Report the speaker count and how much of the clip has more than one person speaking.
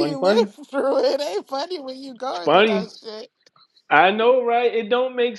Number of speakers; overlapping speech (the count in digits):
2, about 19%